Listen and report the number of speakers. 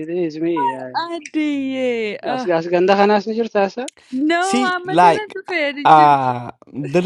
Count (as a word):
three